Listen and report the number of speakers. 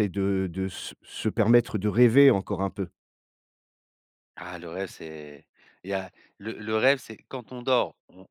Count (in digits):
2